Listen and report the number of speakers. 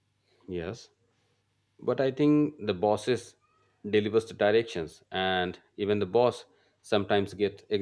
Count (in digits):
1